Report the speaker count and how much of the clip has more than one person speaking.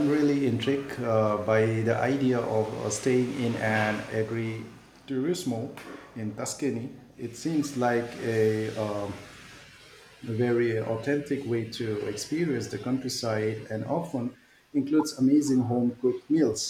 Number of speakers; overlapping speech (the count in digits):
1, no overlap